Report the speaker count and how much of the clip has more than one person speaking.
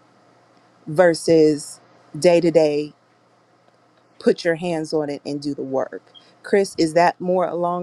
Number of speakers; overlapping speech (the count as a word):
one, no overlap